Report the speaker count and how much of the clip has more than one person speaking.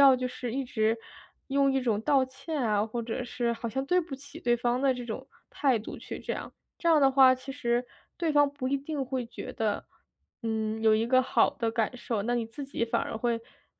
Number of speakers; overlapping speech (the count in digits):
1, no overlap